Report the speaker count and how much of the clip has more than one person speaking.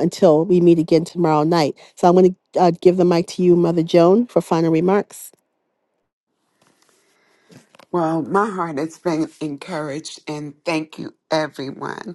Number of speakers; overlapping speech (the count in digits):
2, no overlap